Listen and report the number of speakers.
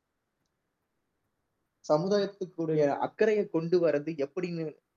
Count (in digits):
1